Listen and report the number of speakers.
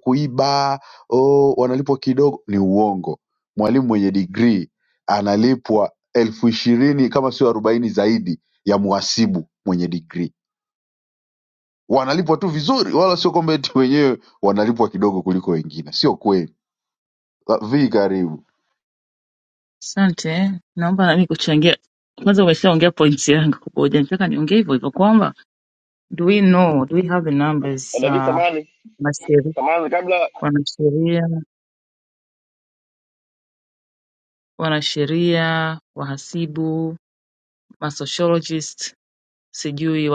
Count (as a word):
three